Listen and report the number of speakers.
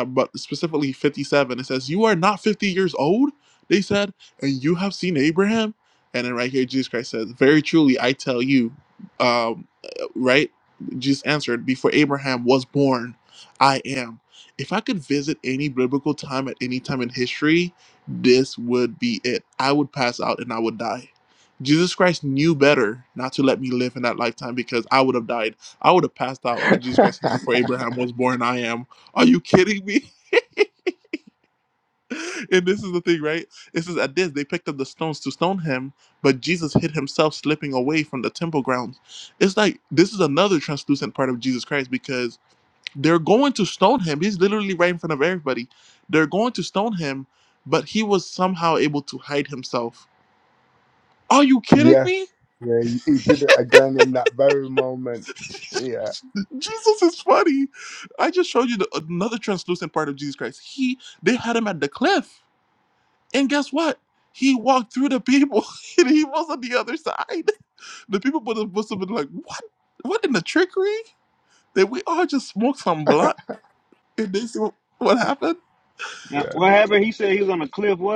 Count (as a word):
three